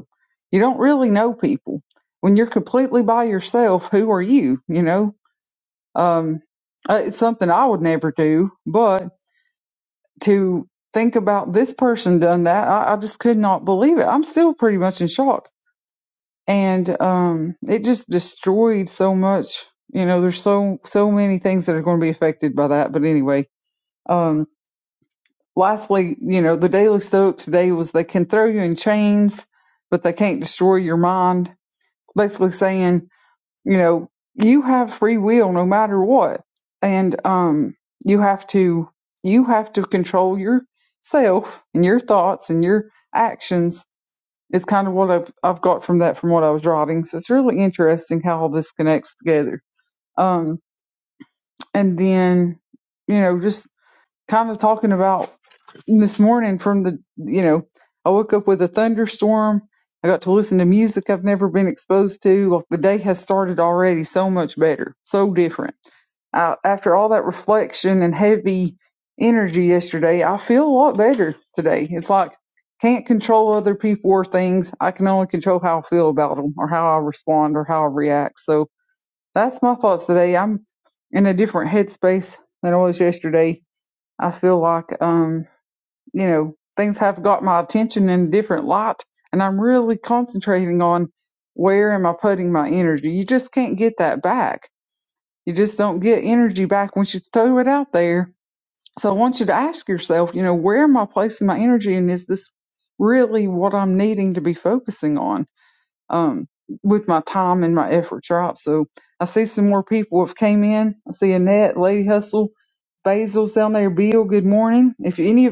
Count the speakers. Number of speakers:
1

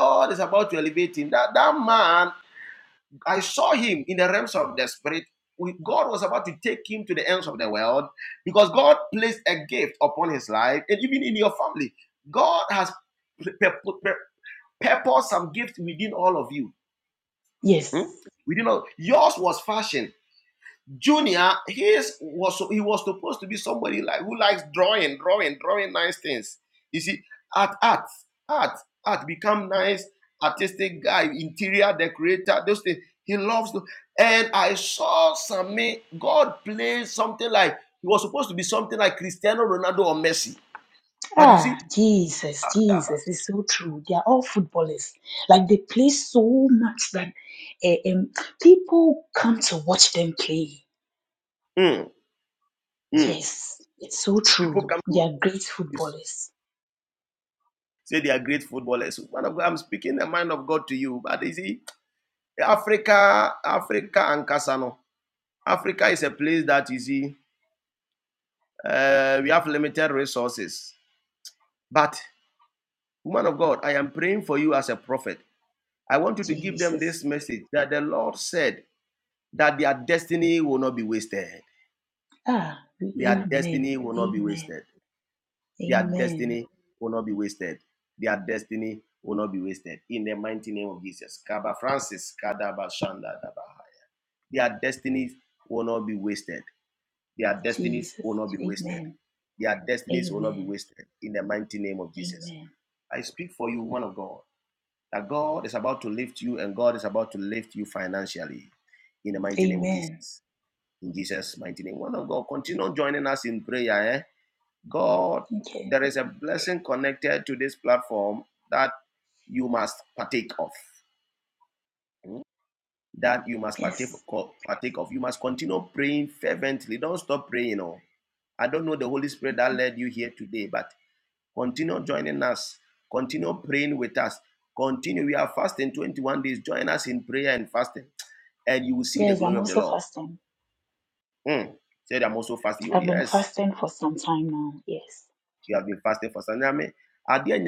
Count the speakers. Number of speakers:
2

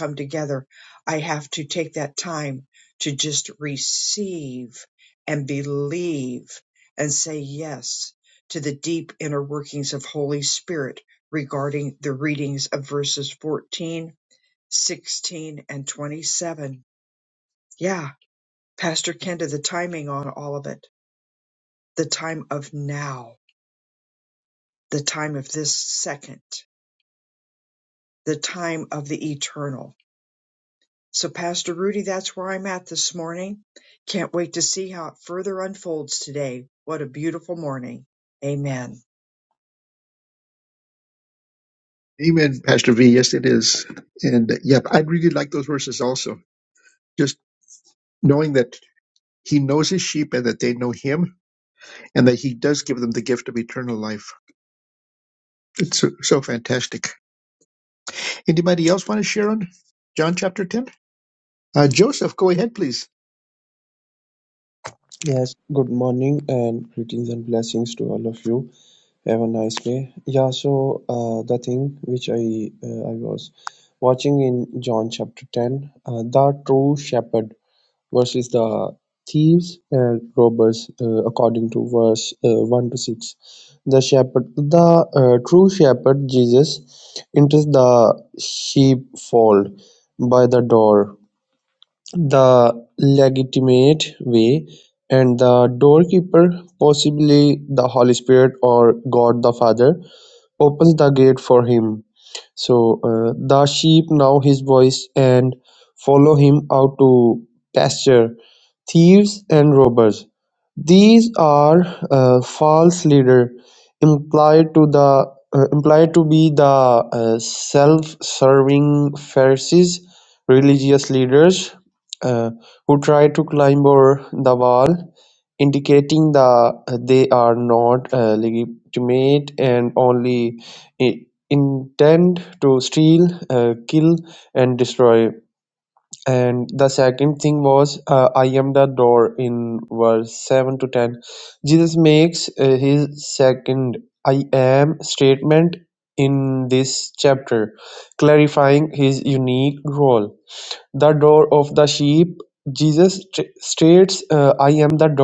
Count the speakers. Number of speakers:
3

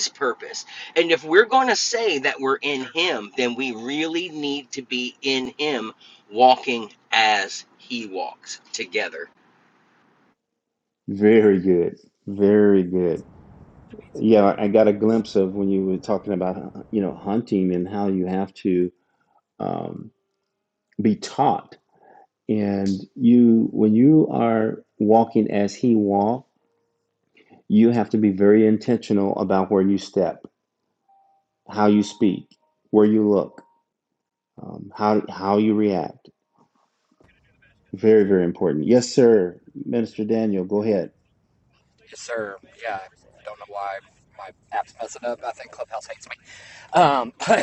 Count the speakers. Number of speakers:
3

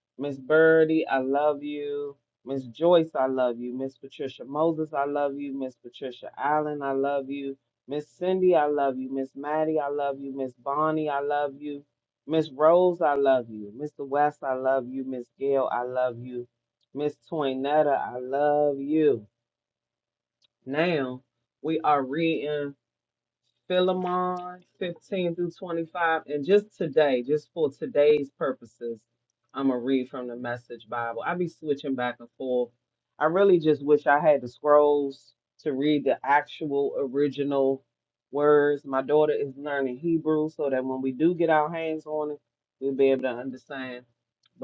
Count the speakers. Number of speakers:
1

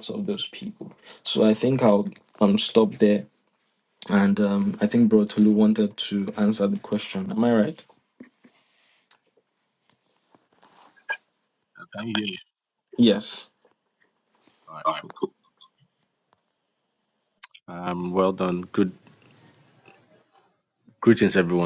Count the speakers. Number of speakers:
2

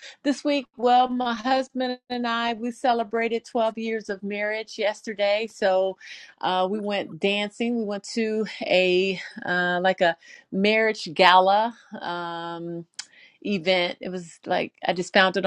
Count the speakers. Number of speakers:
1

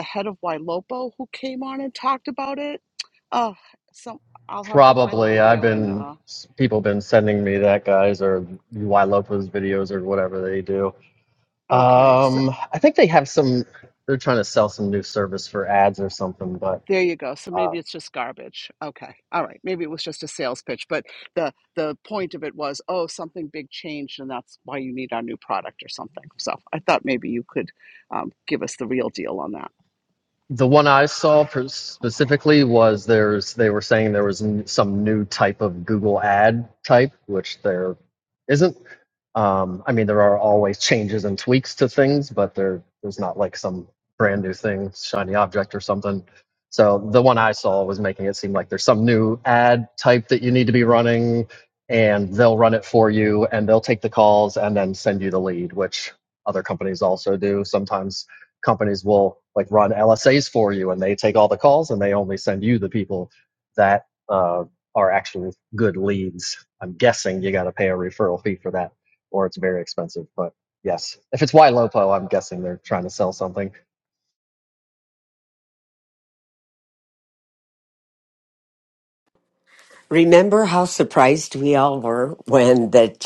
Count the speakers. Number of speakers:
3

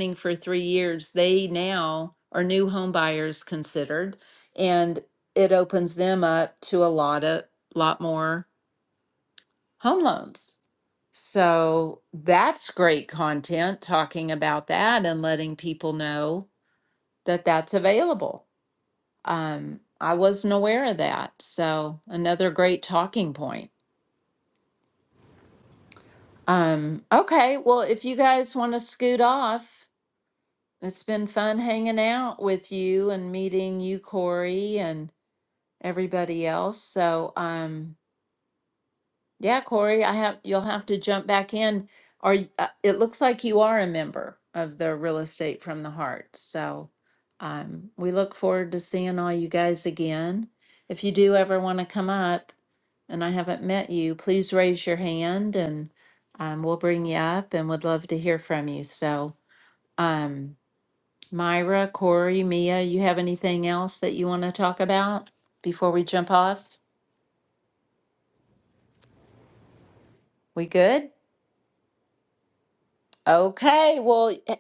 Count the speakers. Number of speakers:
1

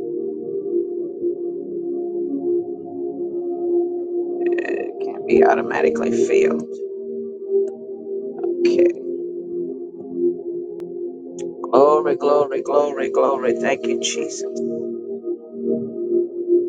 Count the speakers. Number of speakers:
1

